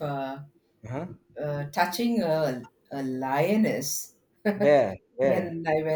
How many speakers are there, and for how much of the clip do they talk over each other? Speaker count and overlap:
2, about 5%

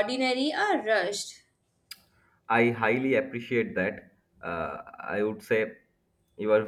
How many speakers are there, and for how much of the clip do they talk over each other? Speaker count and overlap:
2, no overlap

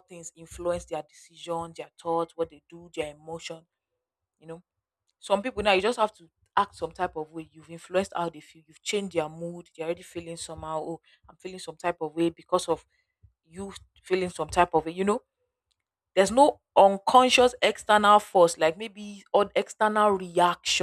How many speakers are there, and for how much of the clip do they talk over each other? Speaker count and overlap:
1, no overlap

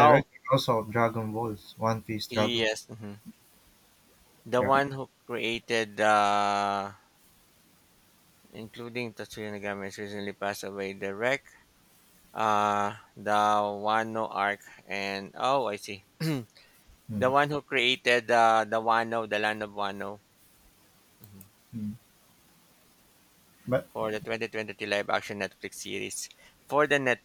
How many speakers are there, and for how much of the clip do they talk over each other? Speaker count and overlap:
2, about 3%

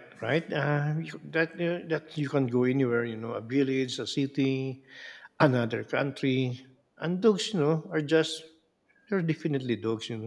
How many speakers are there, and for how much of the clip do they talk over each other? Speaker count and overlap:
1, no overlap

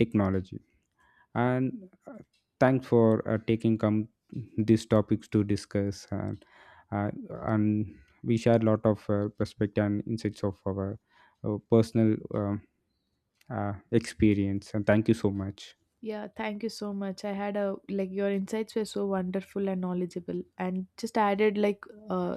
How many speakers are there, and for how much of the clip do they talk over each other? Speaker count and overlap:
2, no overlap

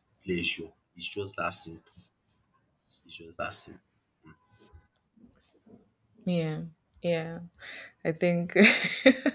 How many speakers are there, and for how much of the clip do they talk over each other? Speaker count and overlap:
2, no overlap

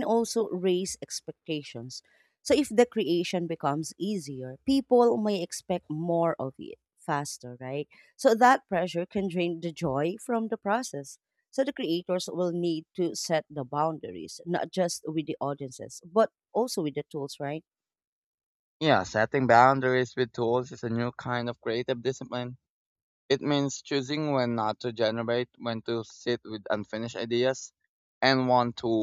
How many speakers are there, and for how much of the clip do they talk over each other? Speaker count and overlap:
2, no overlap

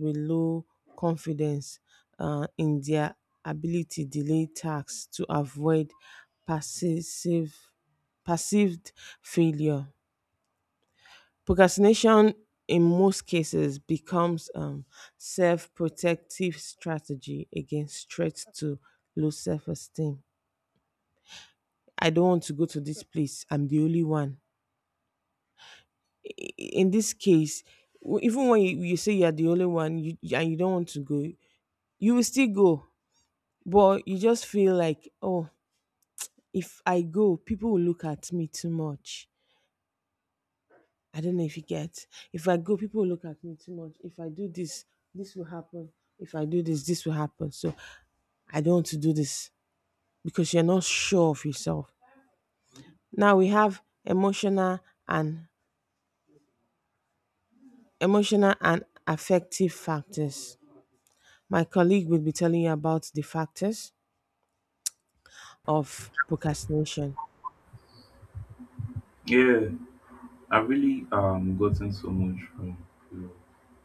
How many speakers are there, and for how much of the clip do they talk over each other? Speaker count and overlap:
2, no overlap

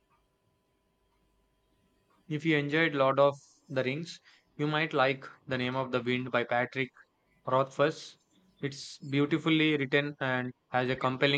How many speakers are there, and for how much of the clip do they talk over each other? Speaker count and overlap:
1, no overlap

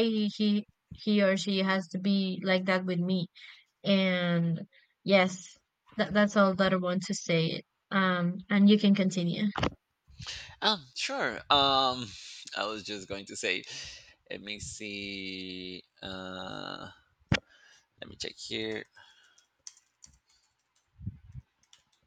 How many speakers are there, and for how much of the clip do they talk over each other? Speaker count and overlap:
2, no overlap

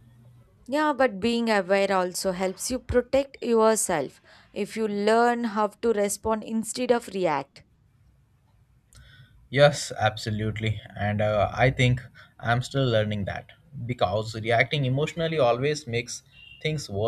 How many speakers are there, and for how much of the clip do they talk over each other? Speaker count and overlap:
2, no overlap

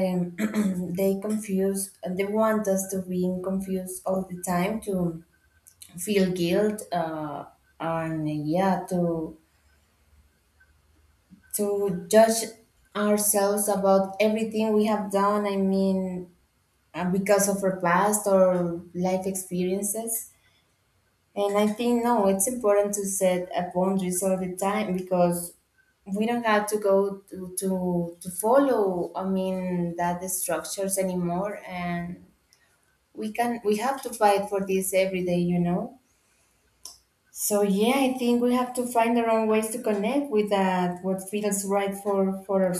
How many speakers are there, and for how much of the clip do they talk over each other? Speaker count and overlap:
1, no overlap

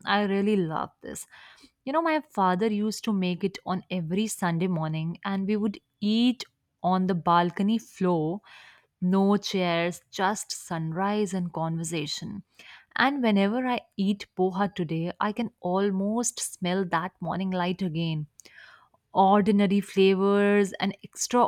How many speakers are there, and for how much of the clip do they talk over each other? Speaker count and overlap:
1, no overlap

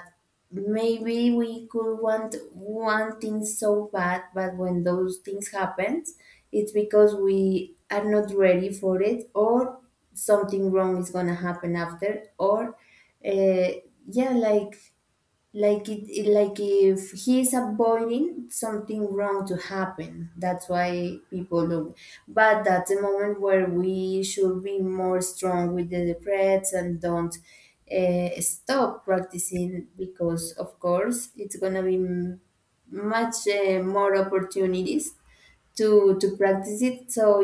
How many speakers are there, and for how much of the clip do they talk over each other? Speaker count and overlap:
1, no overlap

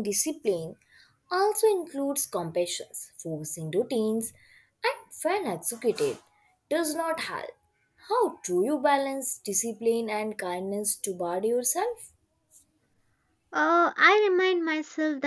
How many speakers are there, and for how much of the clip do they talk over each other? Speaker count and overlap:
2, no overlap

